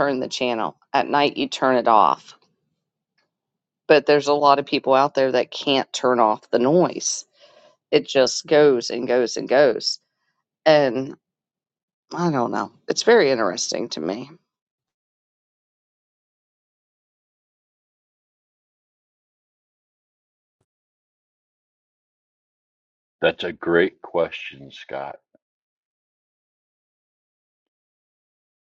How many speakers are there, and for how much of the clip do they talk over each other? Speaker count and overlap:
2, no overlap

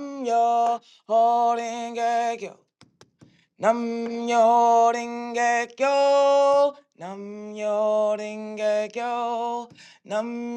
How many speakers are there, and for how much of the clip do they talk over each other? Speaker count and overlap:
1, no overlap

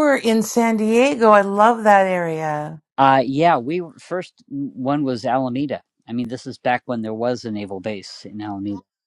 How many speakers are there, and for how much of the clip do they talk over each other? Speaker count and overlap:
2, no overlap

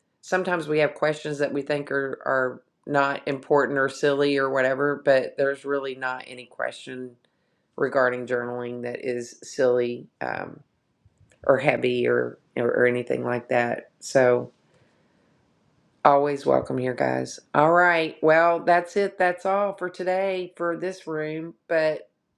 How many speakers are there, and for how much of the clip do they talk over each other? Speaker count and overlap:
1, no overlap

